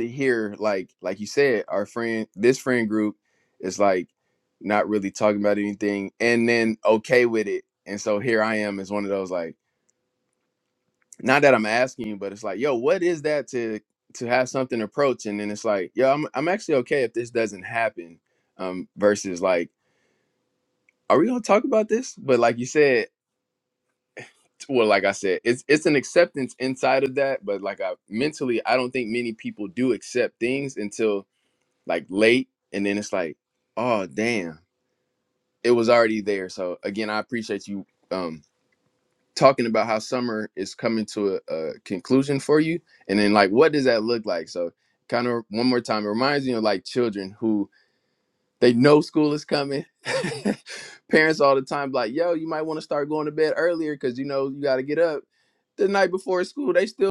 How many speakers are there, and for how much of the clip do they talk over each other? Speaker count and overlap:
1, no overlap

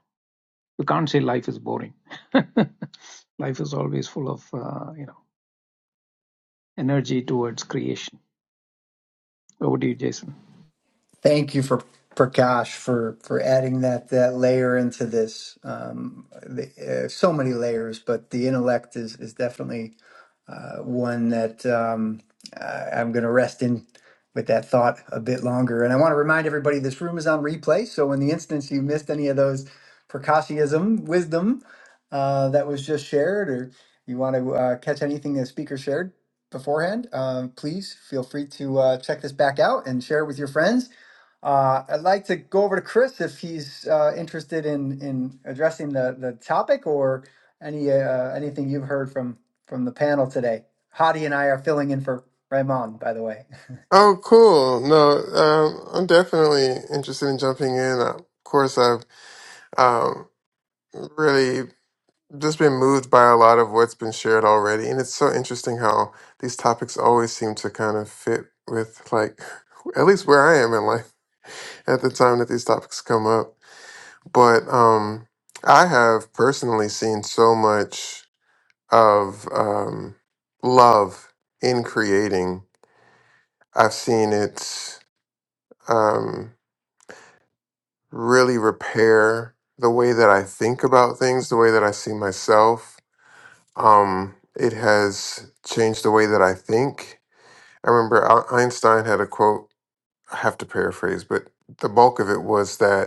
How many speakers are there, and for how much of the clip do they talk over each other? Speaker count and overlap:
3, no overlap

